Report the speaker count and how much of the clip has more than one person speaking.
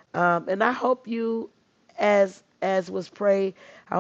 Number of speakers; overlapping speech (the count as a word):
one, no overlap